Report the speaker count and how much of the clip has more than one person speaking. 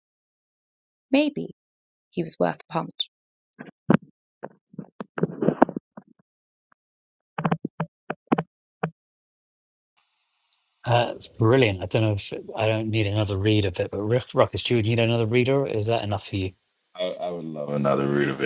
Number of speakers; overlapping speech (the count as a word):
three, no overlap